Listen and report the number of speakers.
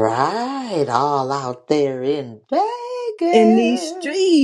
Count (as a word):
two